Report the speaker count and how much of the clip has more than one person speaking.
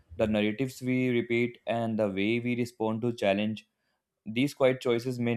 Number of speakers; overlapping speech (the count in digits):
1, no overlap